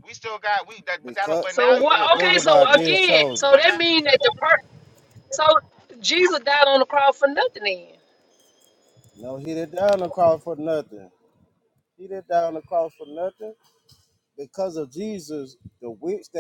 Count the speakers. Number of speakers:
3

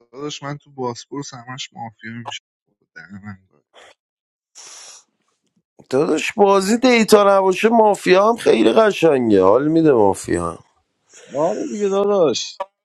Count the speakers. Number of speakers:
3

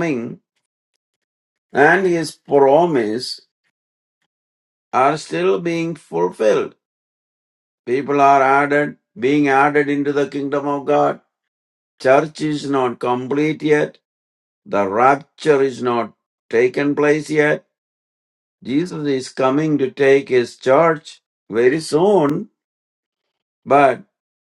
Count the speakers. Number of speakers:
1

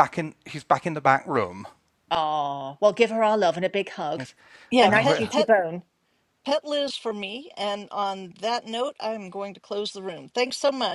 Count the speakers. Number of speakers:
3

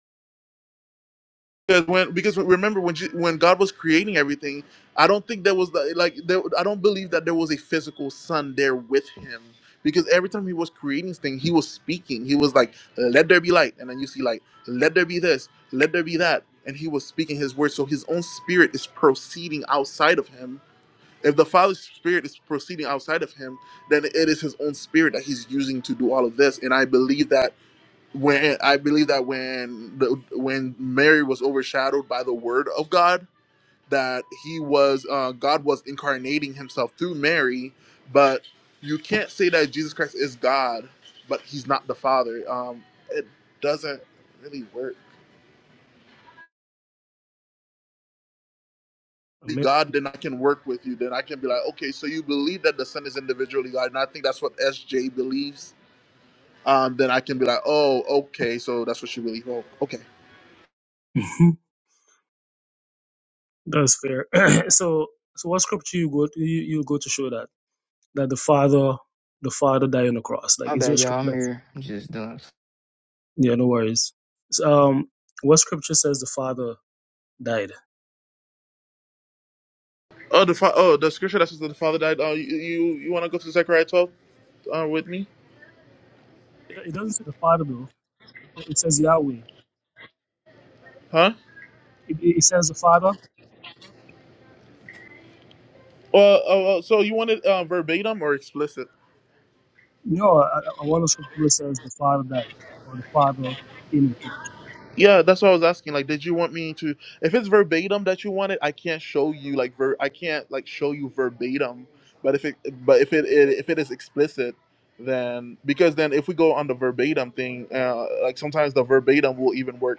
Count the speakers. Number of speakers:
3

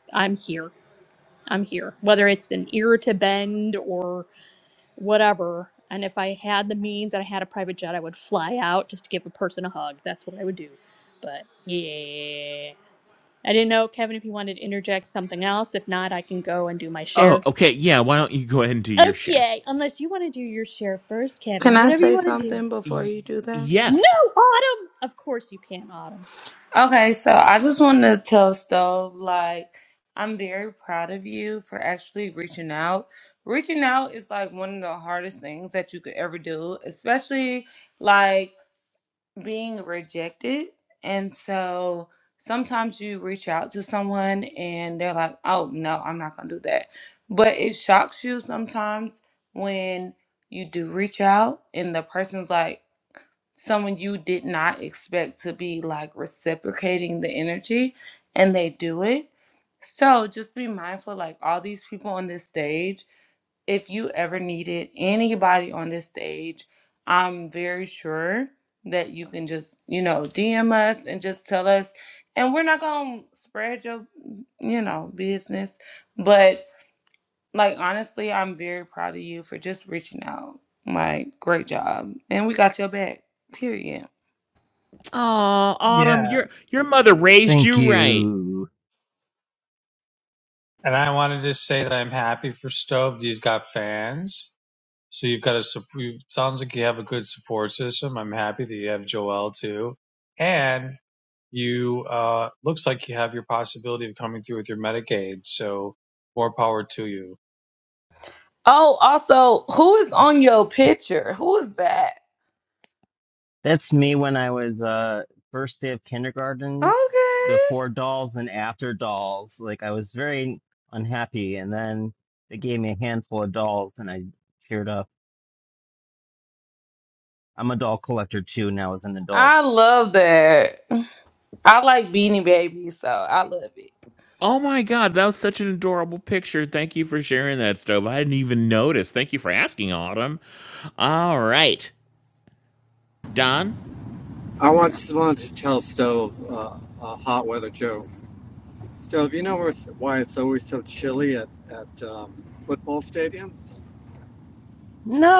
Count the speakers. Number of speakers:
6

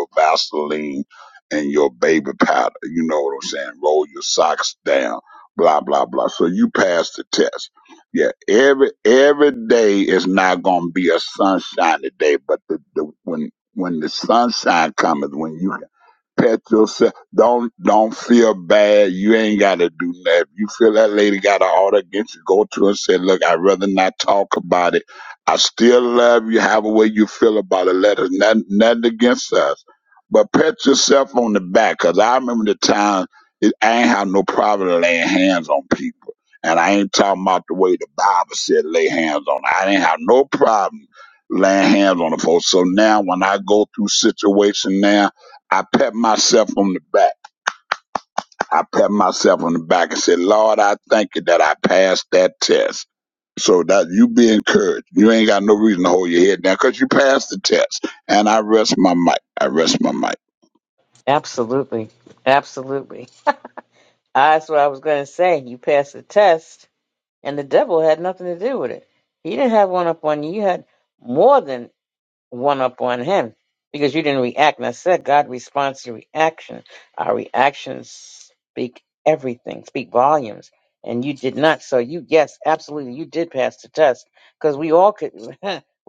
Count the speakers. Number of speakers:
2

